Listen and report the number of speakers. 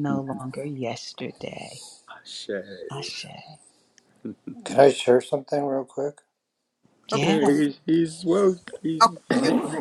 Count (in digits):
3